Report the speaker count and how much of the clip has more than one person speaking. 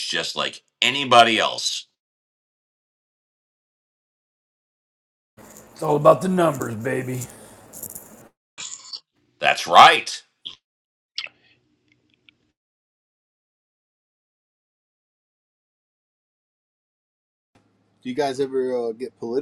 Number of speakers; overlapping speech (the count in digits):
3, no overlap